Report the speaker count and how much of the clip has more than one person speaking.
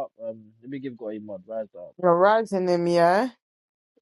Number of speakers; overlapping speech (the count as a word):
two, no overlap